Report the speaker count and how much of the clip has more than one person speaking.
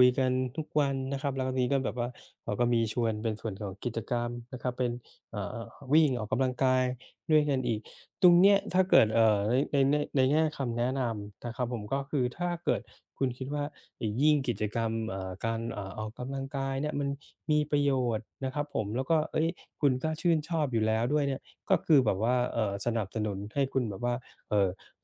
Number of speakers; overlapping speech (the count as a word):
one, no overlap